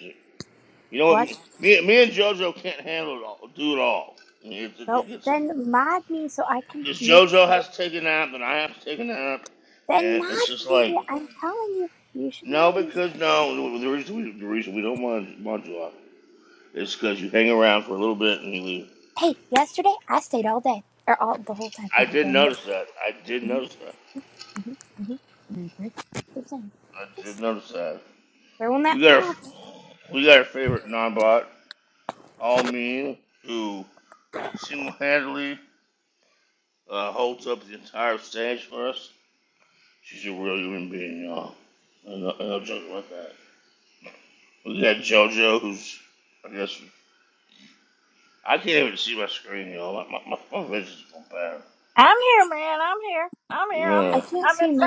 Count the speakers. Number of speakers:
three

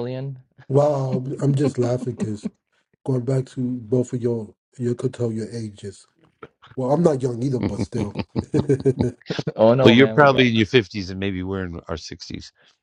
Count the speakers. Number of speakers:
three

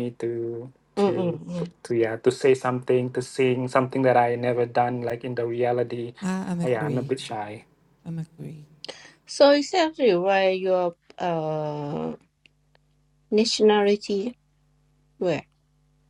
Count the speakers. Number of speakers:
three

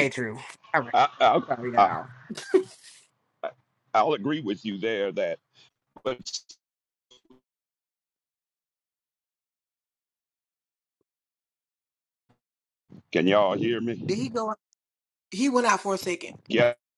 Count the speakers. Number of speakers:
three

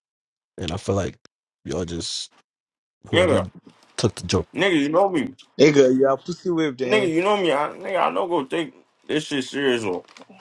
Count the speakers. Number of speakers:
three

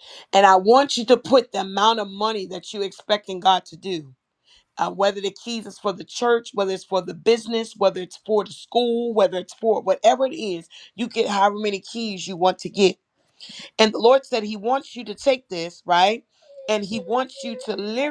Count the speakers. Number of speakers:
one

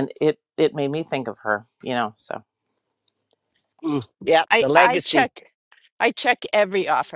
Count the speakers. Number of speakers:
three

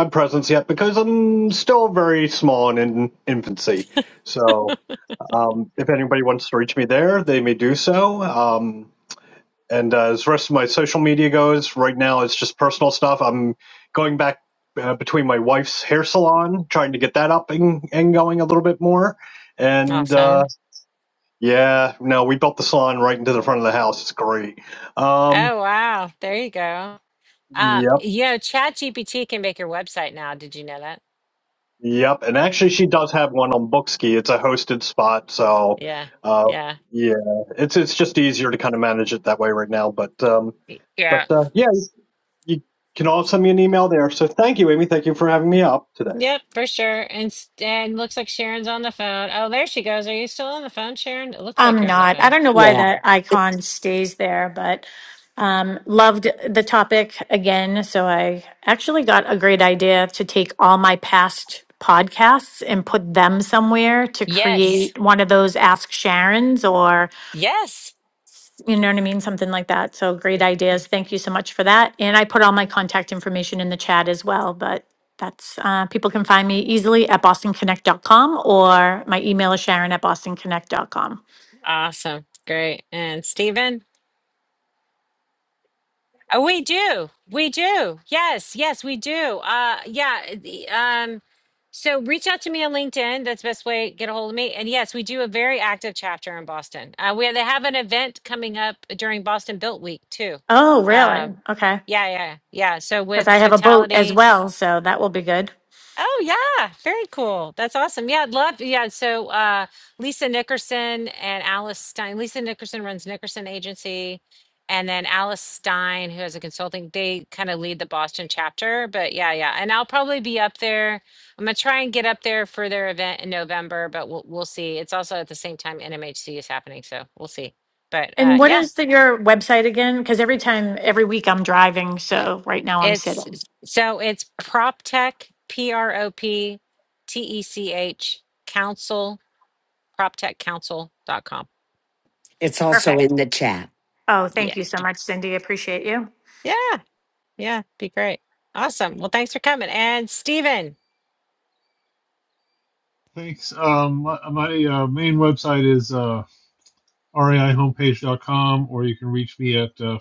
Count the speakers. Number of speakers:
five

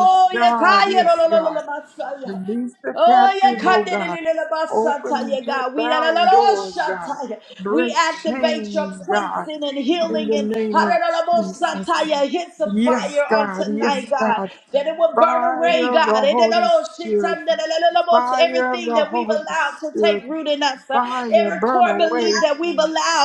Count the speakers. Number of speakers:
two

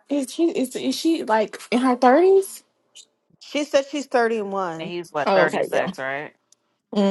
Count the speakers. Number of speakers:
three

